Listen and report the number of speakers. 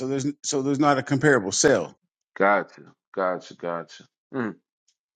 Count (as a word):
two